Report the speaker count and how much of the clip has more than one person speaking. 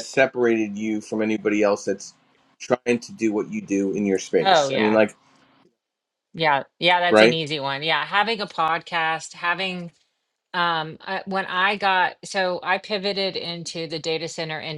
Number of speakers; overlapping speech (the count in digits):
2, about 6%